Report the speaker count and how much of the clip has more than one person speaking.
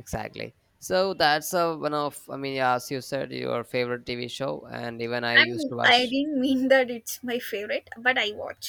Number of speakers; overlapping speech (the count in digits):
2, about 9%